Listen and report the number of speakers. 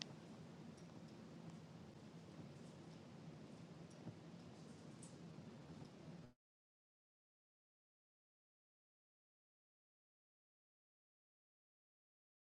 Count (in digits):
0